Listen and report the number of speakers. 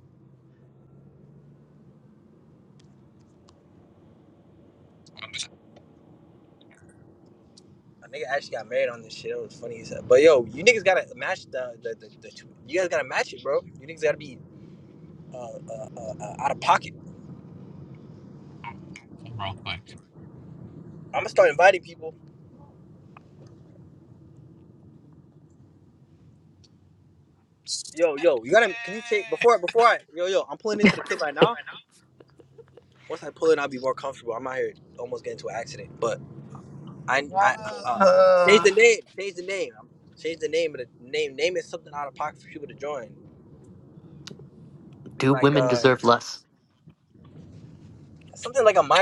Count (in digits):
3